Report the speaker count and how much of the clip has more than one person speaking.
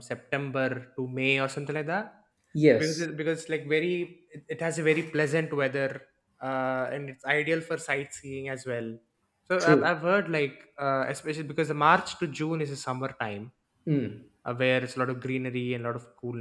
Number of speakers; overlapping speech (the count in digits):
2, about 3%